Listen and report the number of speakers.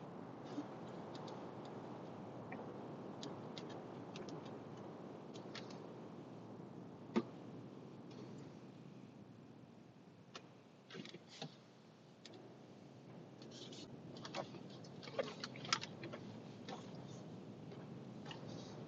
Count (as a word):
zero